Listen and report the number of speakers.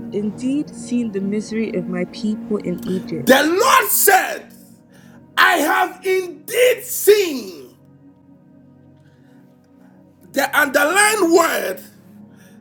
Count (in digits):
2